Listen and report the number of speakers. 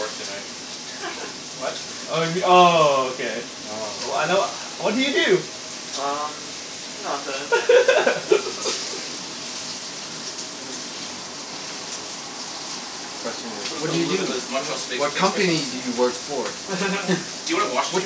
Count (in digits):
4